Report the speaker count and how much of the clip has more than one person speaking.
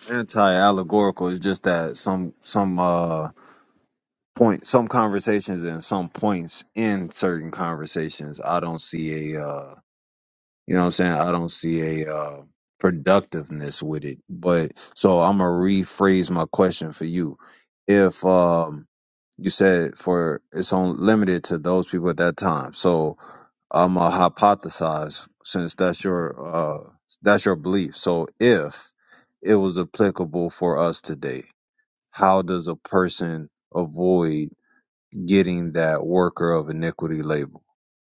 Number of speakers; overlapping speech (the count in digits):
1, no overlap